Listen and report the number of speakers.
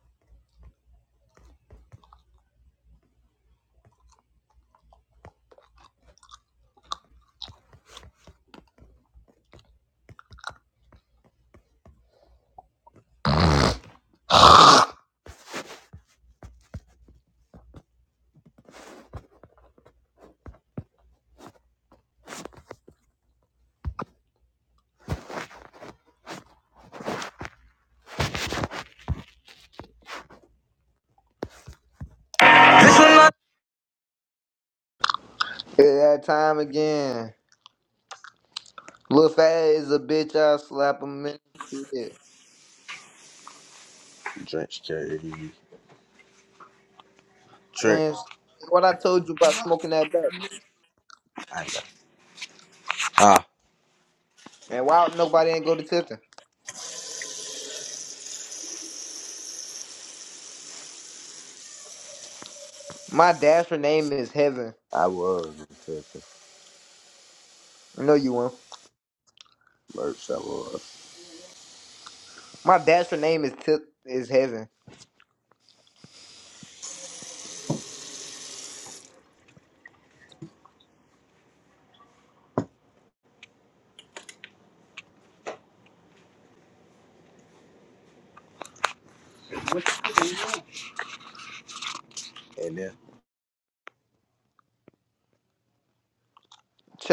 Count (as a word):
two